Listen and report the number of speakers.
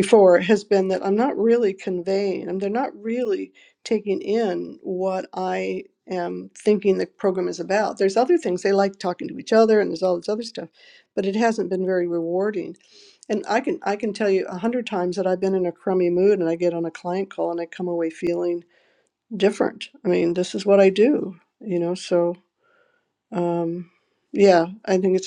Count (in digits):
1